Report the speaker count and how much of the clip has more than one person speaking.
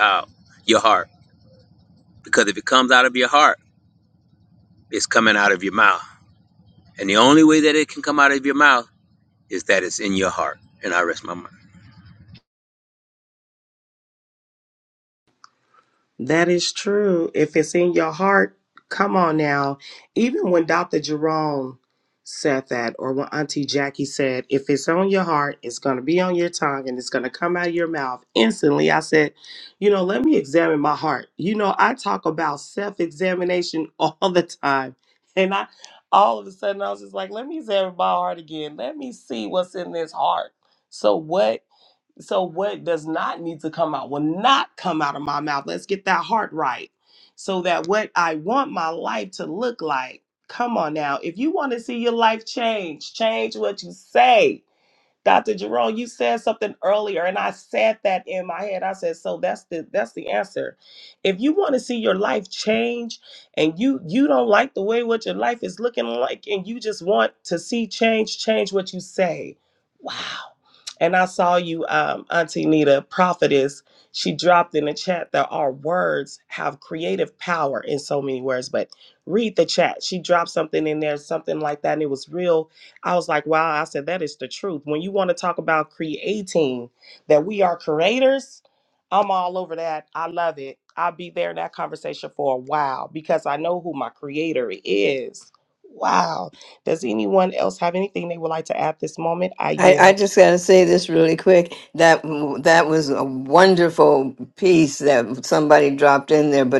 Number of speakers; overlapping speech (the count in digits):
3, under 1%